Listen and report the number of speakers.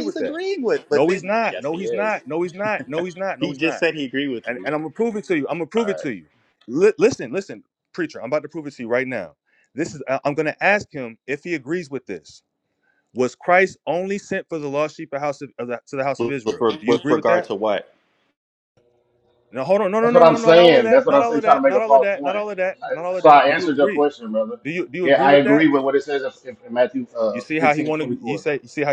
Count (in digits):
3